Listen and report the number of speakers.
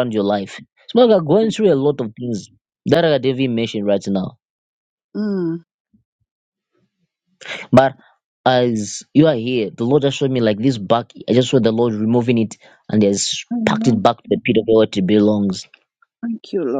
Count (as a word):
two